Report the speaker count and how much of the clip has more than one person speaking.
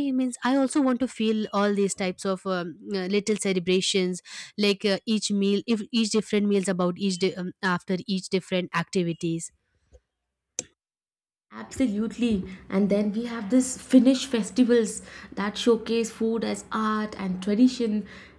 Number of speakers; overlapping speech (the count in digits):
2, no overlap